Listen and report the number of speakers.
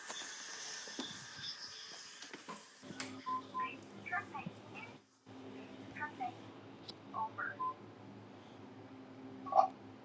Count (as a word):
zero